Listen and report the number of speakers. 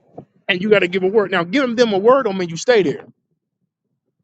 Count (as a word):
one